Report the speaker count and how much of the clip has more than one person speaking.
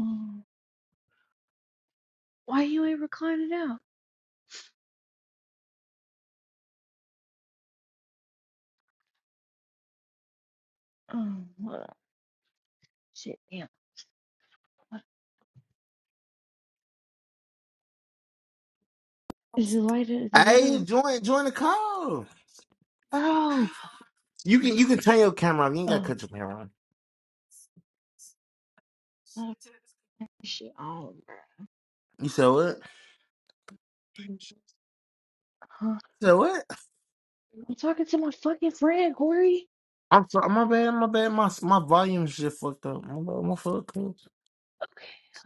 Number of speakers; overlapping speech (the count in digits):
2, about 2%